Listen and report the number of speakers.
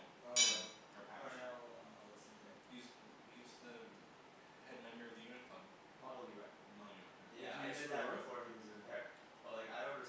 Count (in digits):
3